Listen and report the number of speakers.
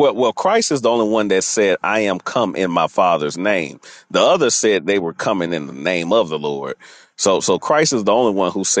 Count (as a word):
one